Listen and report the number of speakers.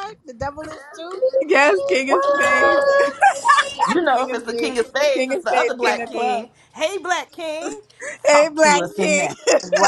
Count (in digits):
3